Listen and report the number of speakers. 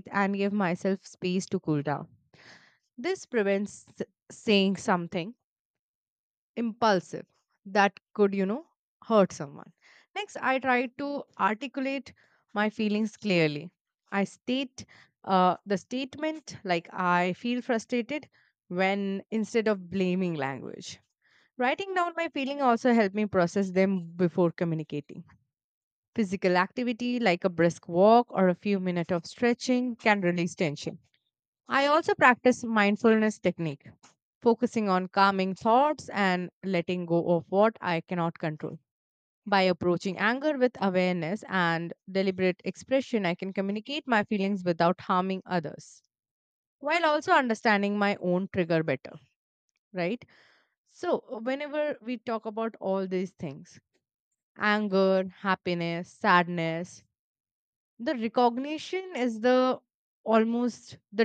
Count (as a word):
one